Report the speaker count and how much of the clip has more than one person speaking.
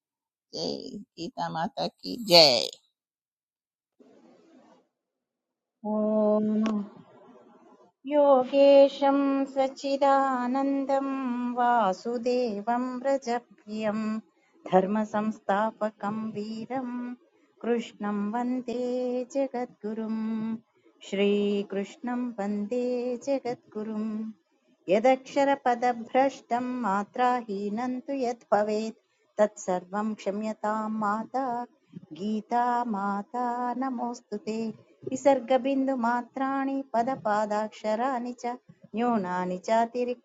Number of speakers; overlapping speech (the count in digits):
2, no overlap